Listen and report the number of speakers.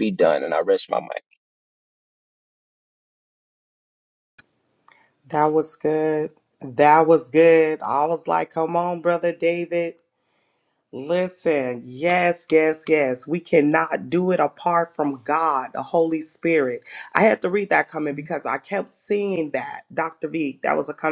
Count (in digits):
2